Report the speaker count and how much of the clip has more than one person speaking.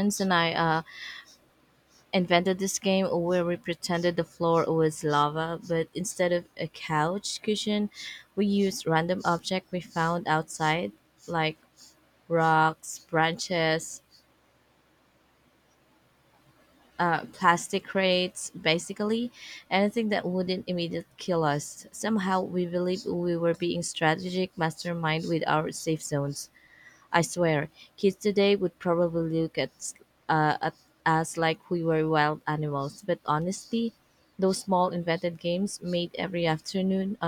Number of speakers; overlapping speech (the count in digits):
1, no overlap